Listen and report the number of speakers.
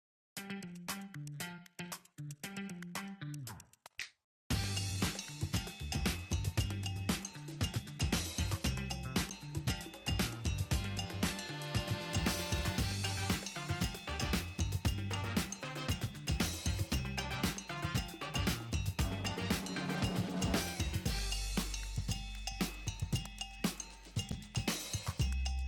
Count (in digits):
0